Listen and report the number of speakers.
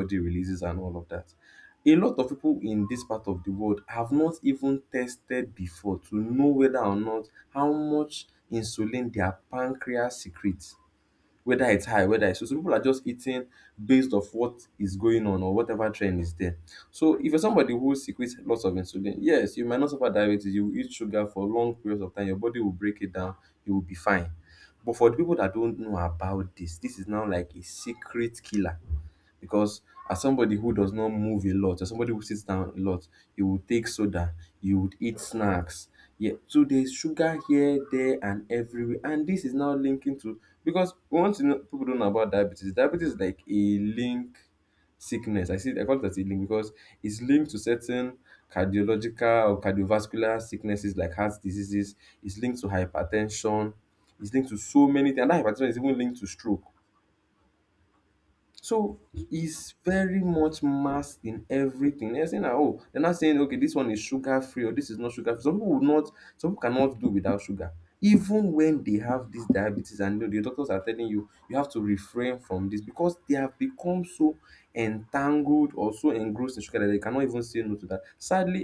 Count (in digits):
1